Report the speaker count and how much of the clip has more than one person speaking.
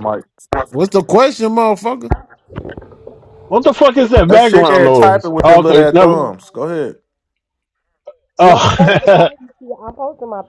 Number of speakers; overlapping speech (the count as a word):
four, about 27%